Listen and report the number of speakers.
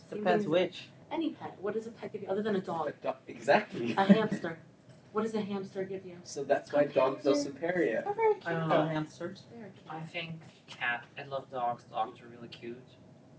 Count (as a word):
four